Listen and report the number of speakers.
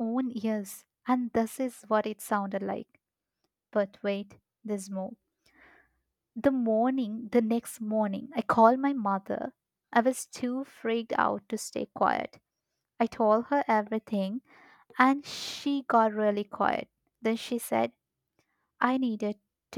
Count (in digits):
1